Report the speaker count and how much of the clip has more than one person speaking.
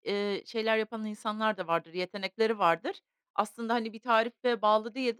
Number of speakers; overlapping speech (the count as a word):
one, no overlap